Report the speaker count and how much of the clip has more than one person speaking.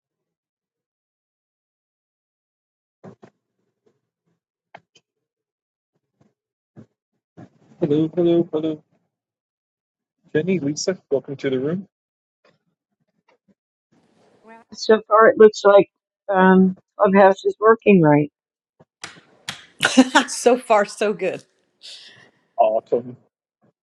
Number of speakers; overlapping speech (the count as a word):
three, no overlap